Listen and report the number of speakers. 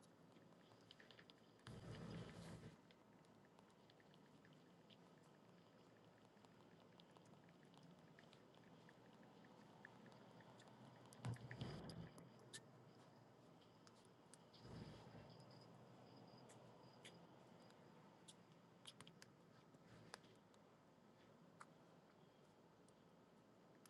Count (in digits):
0